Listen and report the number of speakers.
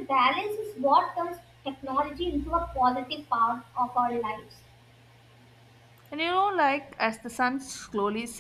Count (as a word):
two